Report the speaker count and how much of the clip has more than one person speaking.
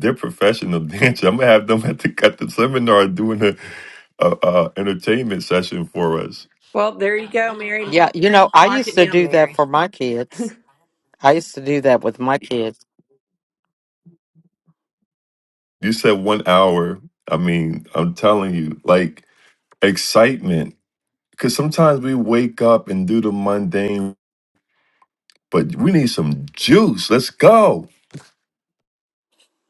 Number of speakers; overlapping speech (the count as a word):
three, about 4%